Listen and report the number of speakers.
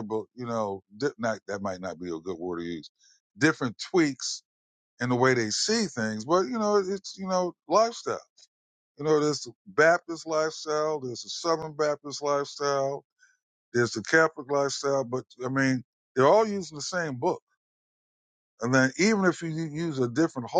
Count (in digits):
1